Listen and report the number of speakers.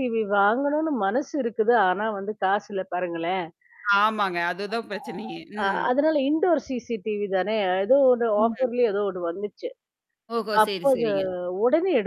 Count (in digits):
2